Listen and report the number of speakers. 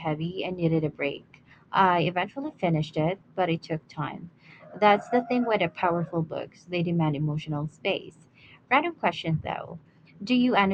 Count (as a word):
one